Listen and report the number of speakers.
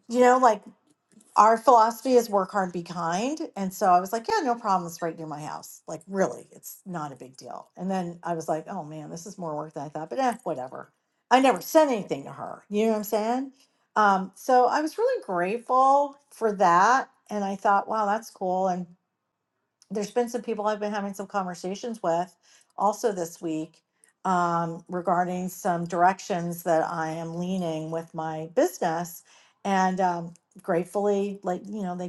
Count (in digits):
1